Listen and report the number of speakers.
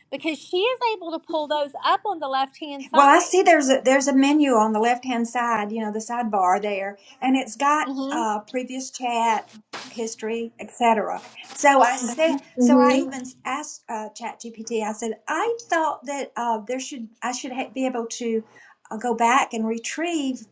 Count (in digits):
2